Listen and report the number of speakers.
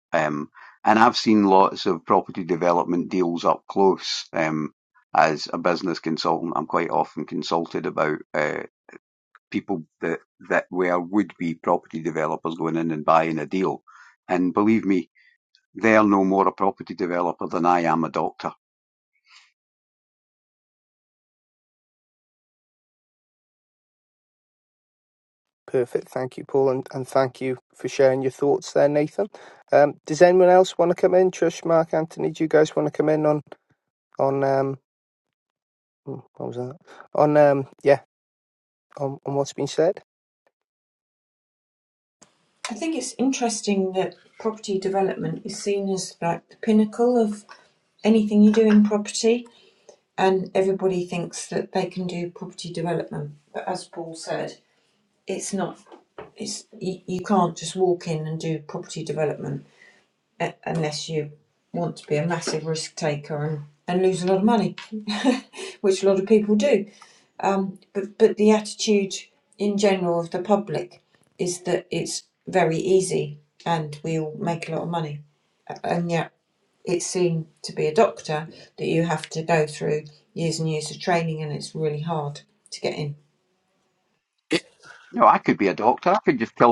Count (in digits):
3